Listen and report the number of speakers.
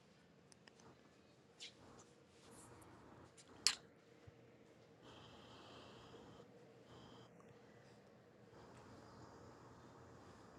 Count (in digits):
0